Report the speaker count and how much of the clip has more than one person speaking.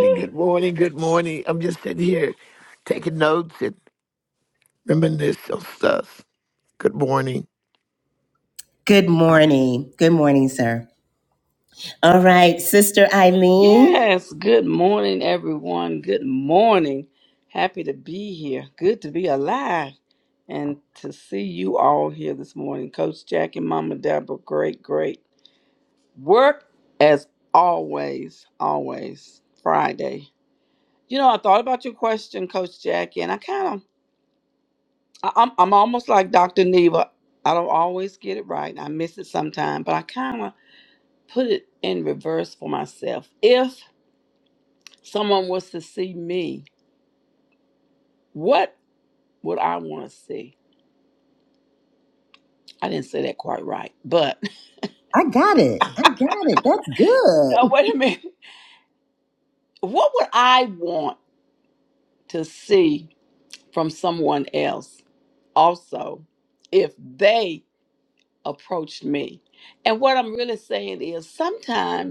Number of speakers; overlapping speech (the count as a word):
three, about 1%